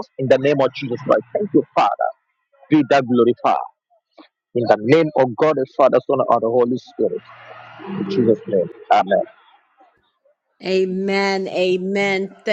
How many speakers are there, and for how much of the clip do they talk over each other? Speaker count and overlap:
two, no overlap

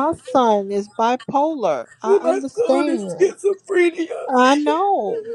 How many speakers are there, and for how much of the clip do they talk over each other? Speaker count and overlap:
two, about 23%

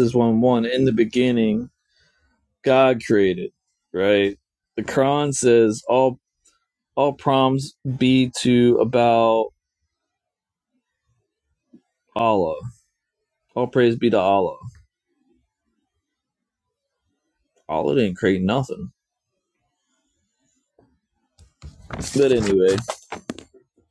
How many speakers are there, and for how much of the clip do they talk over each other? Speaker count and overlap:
one, no overlap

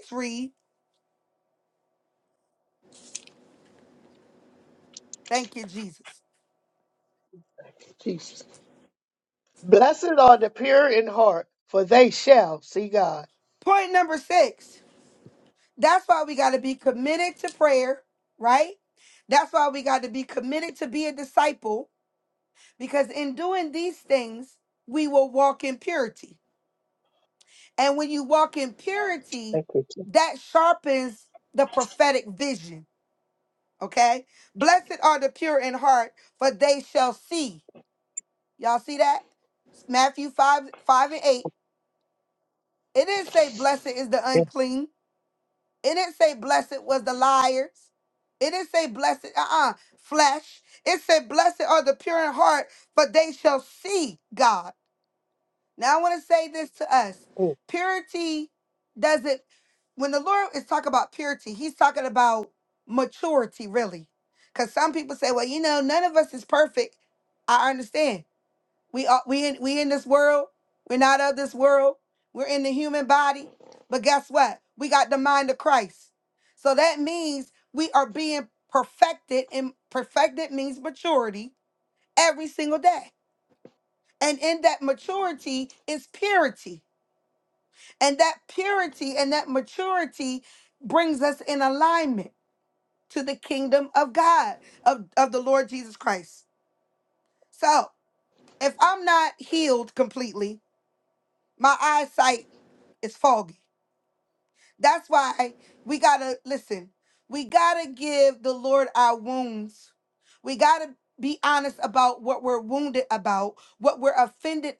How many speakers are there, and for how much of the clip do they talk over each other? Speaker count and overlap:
two, under 1%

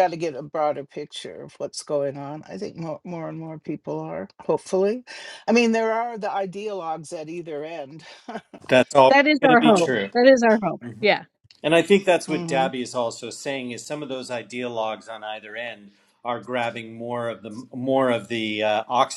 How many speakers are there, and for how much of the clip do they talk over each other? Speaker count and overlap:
three, about 7%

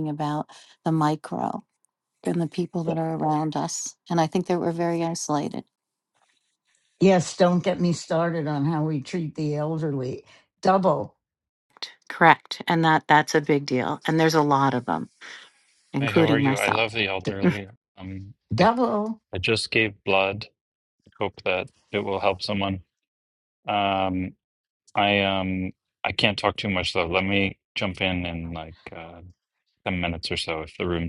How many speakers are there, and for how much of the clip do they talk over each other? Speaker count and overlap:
three, about 3%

